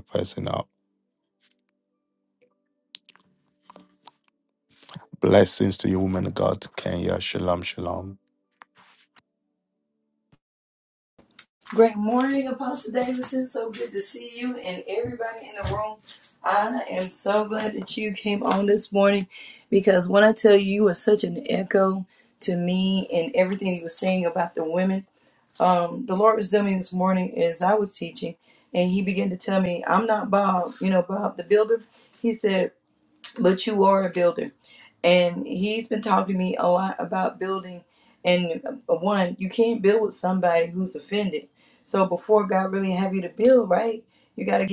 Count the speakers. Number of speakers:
two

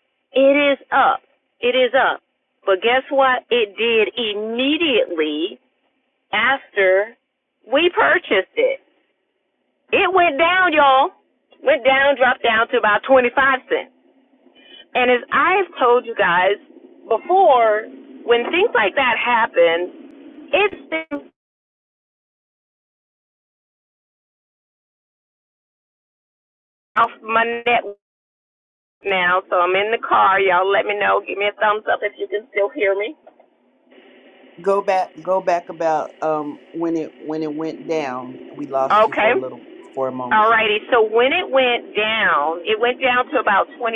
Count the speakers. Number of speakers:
two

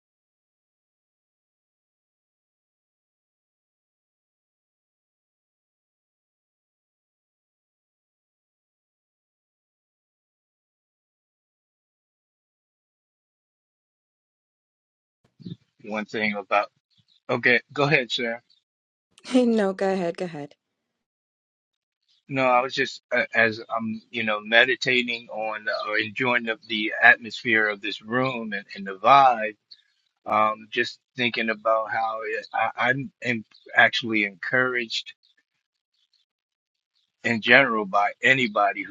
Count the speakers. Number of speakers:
two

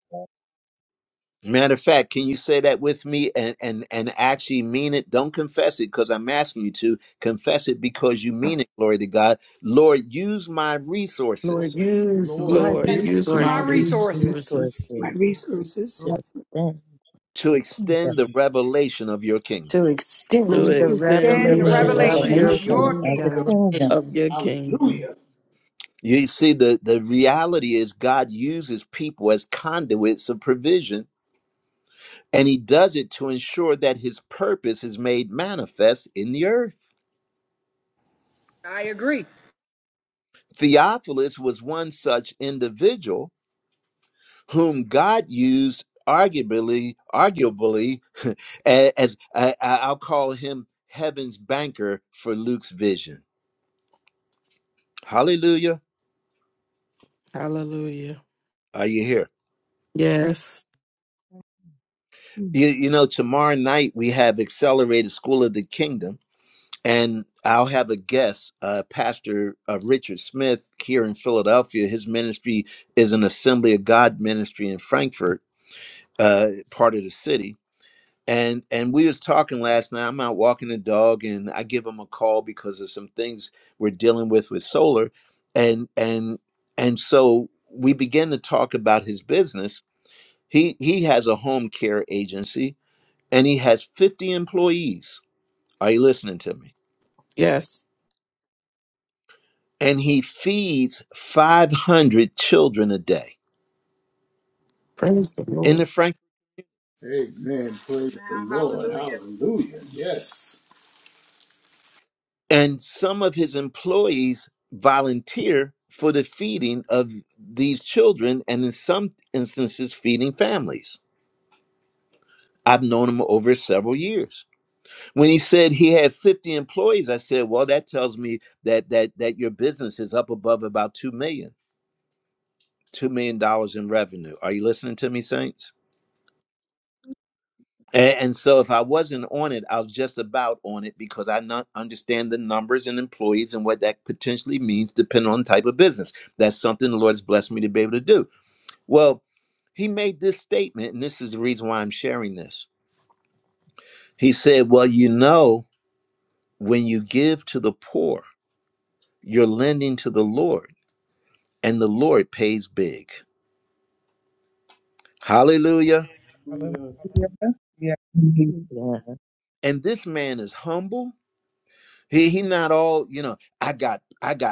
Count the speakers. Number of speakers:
eight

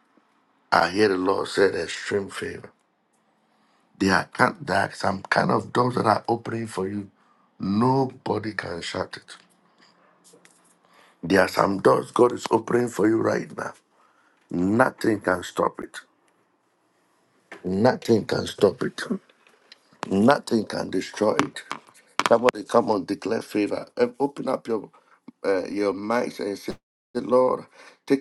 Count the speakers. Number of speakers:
one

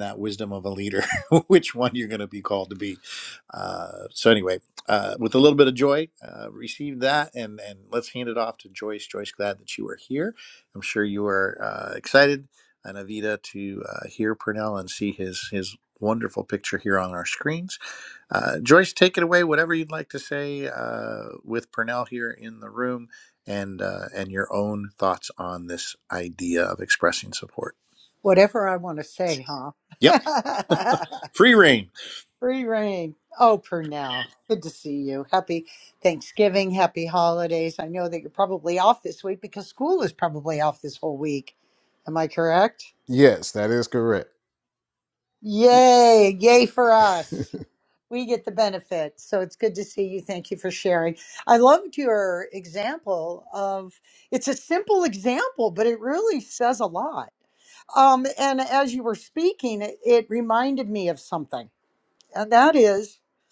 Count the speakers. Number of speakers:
three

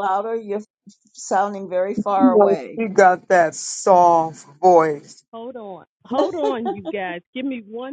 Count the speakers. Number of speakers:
three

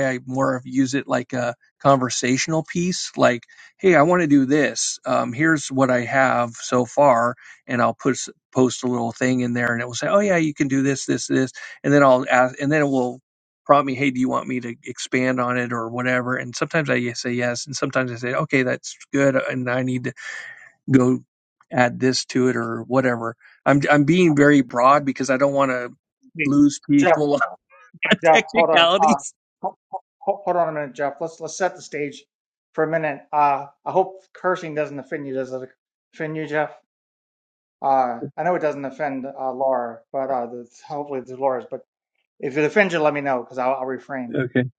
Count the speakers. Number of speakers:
two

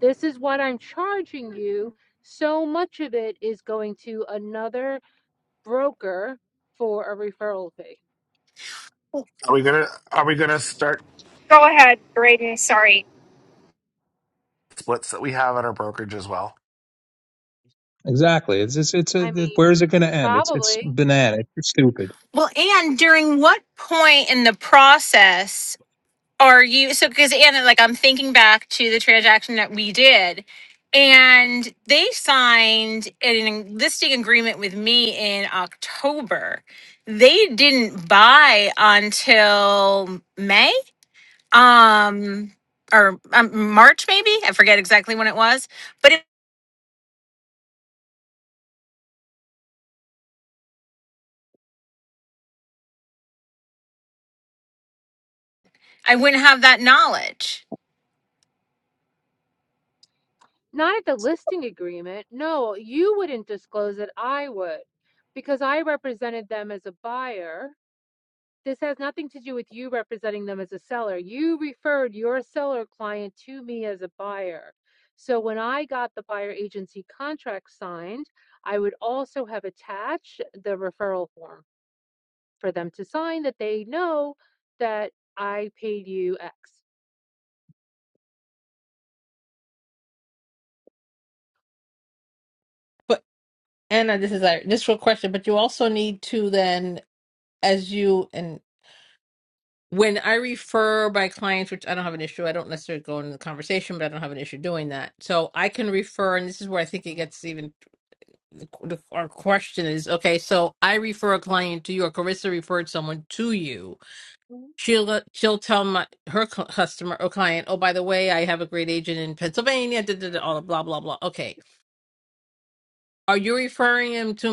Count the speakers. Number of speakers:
six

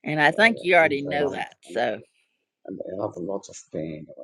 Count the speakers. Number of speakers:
two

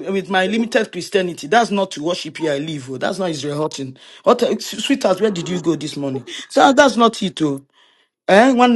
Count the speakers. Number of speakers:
one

